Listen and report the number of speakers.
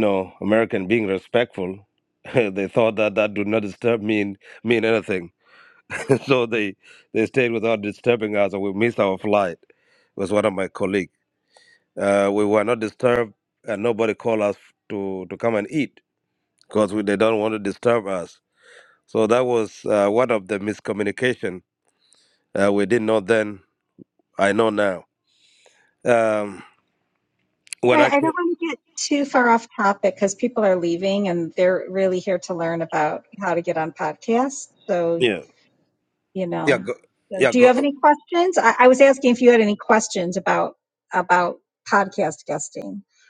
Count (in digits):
2